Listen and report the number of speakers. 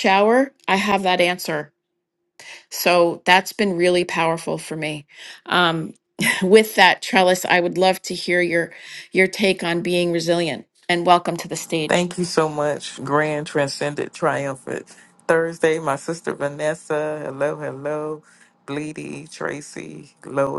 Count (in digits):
2